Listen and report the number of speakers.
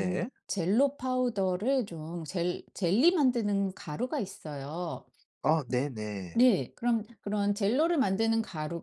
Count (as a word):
two